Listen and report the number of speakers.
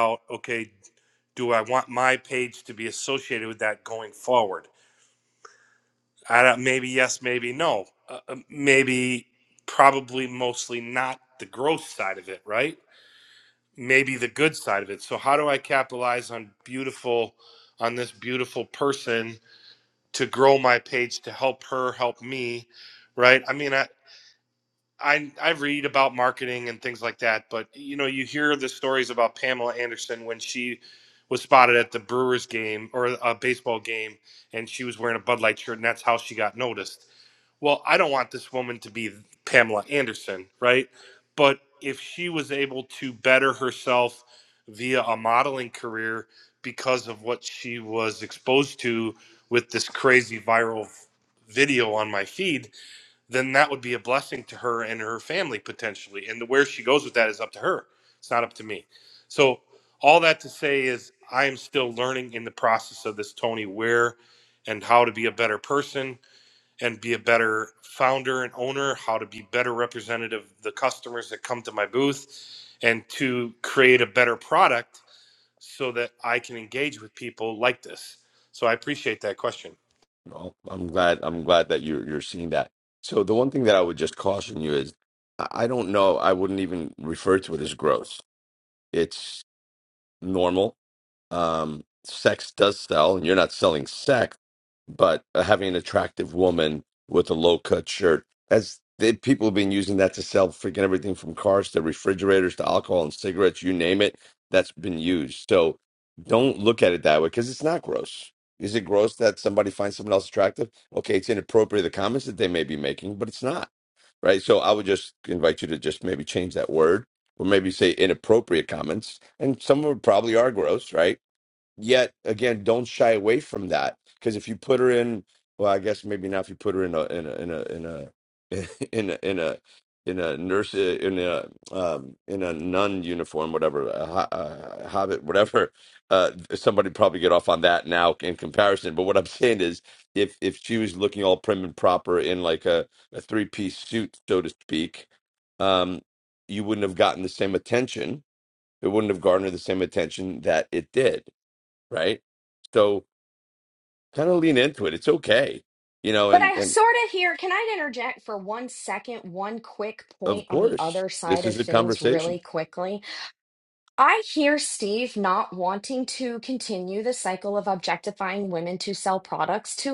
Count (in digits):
3